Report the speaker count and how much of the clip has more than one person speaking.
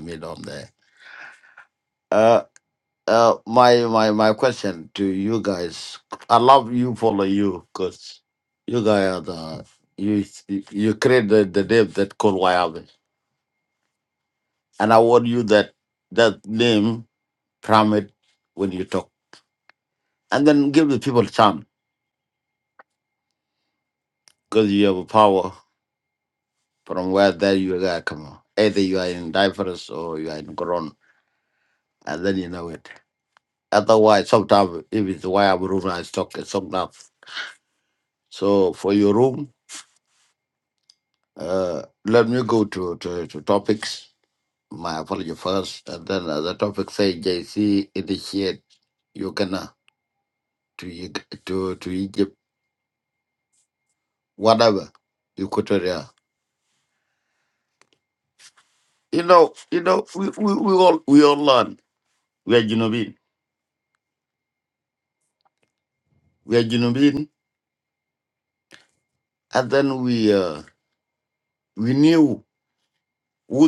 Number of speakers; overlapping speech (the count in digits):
1, no overlap